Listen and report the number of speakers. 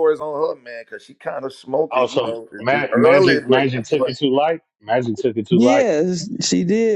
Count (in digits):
3